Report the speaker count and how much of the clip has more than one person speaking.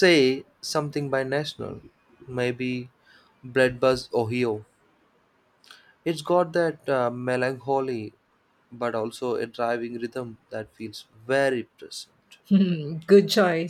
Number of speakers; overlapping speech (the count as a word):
two, no overlap